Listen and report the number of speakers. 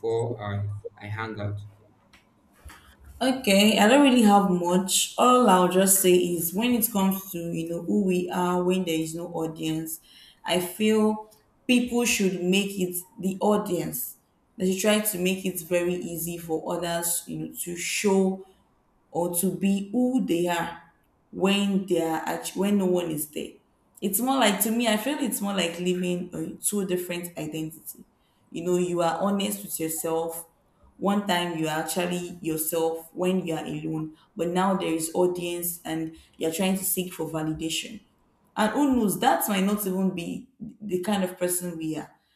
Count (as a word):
two